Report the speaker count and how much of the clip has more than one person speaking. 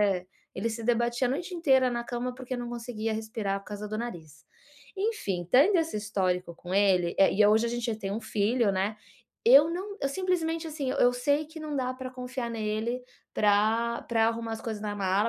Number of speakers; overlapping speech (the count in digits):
1, no overlap